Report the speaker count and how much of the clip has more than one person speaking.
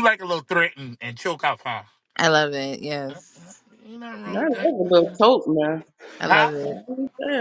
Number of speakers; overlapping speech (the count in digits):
3, about 10%